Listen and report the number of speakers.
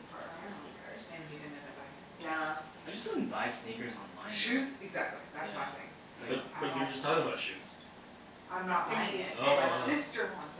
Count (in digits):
4